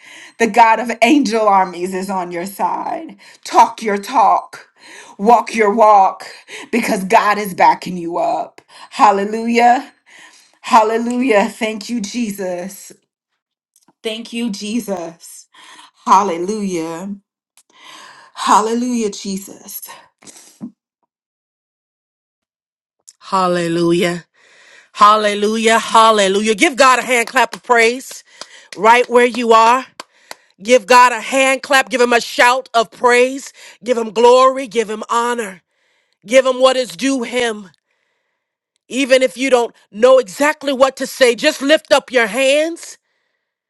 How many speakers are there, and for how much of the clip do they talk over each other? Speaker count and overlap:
2, no overlap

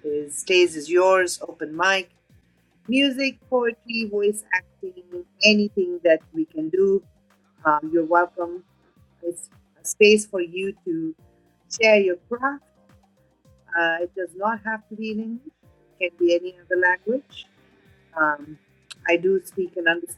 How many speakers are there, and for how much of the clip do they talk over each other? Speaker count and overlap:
1, no overlap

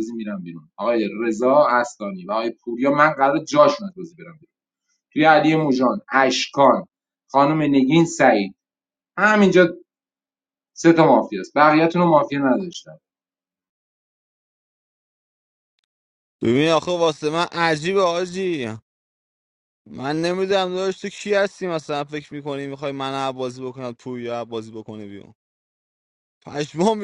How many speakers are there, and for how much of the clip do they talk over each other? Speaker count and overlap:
2, no overlap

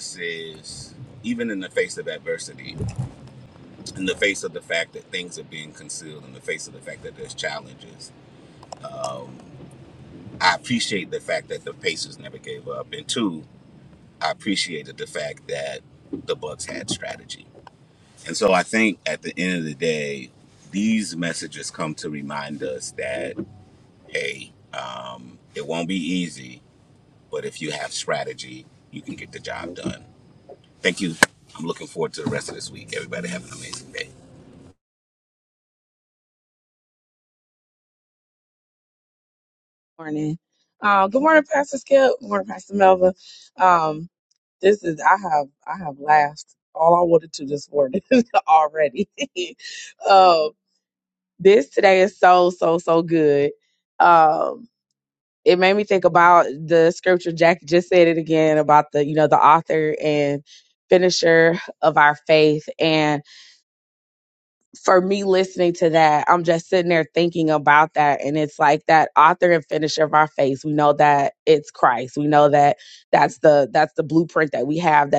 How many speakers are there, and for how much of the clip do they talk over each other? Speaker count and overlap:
2, no overlap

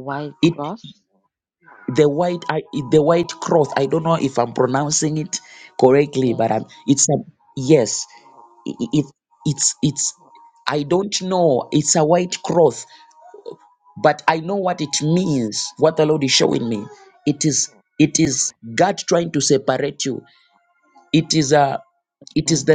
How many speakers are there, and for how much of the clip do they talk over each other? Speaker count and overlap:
2, about 3%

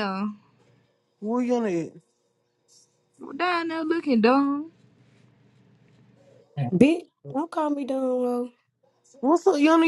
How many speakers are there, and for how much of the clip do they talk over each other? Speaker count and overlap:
3, no overlap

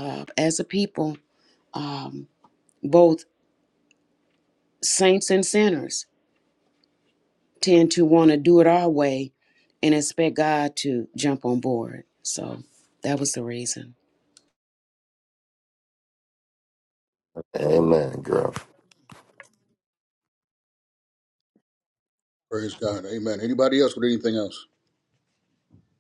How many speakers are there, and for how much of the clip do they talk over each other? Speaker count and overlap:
3, no overlap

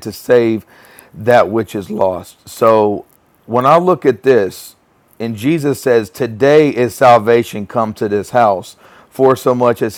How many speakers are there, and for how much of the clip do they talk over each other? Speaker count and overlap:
1, no overlap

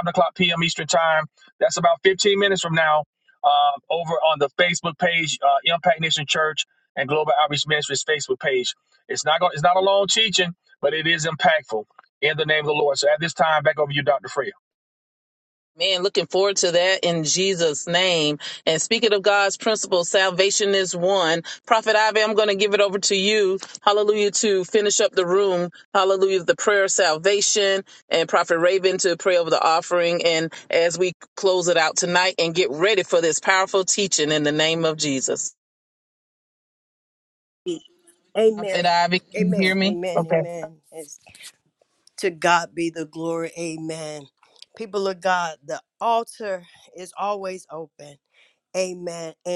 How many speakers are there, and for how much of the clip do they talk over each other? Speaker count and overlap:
3, about 2%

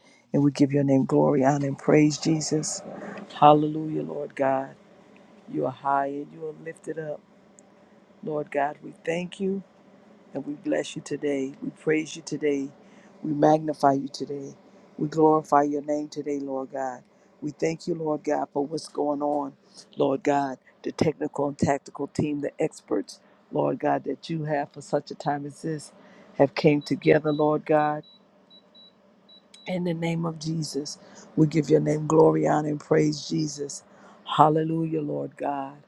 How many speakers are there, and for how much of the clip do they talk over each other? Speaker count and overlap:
1, no overlap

